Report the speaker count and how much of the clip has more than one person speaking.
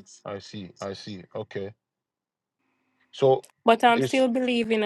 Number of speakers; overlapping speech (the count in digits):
2, about 5%